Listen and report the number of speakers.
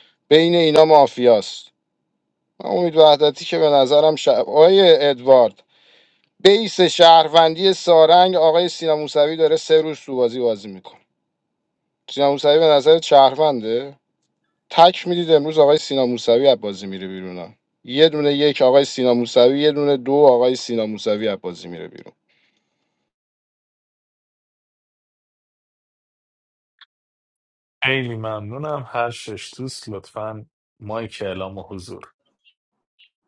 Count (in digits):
2